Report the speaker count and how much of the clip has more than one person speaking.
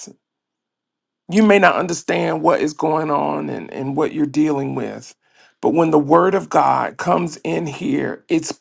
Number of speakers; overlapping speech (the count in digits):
1, no overlap